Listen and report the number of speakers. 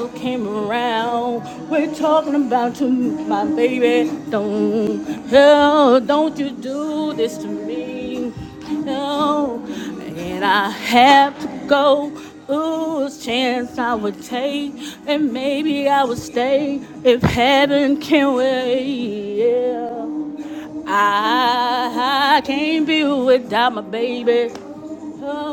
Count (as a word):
one